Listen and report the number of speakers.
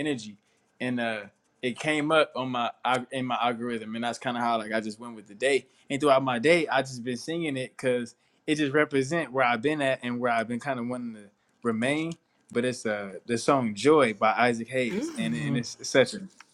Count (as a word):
one